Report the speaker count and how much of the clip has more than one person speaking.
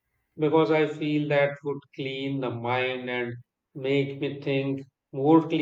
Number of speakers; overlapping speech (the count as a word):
one, no overlap